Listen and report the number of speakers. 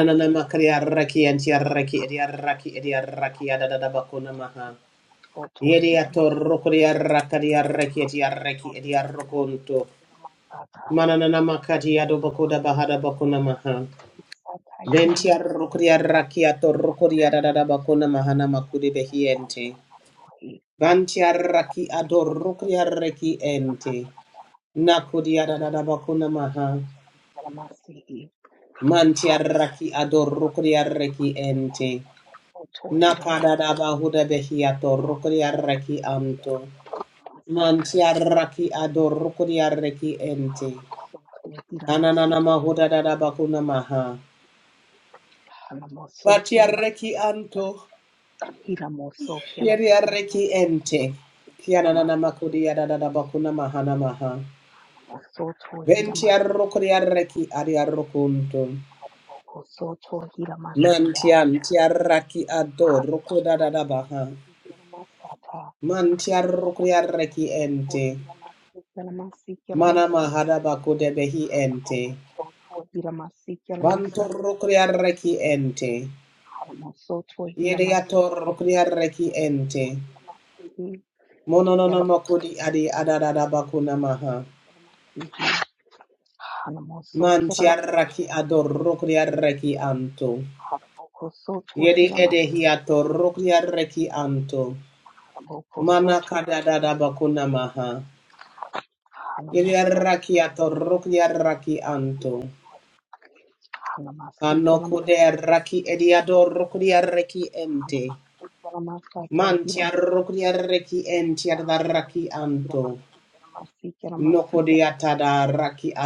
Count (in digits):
2